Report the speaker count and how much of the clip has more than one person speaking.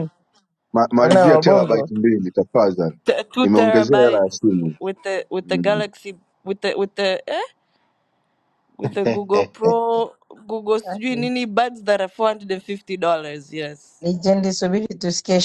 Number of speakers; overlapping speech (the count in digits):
3, about 13%